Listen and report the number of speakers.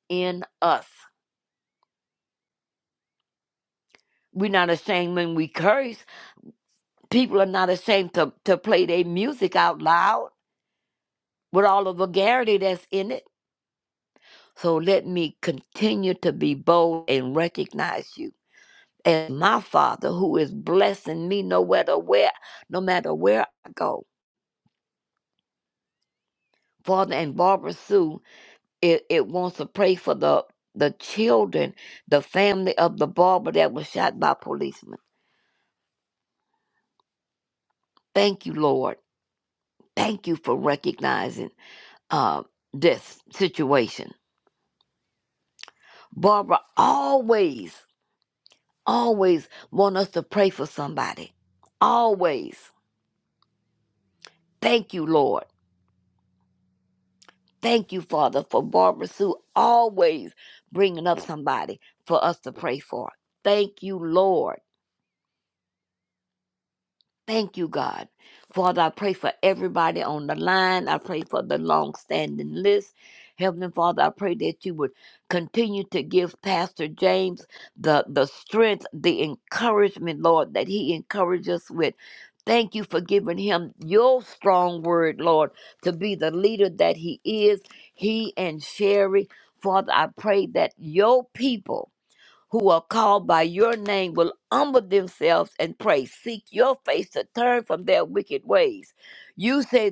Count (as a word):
one